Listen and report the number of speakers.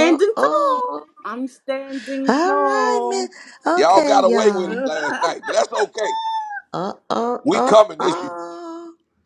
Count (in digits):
3